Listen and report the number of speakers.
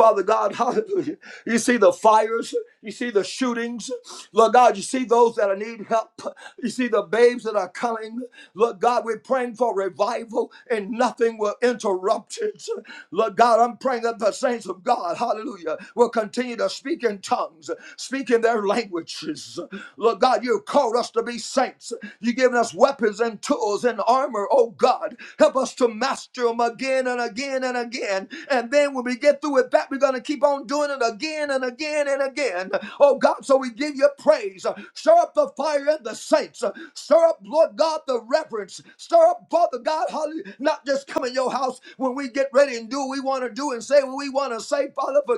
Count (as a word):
one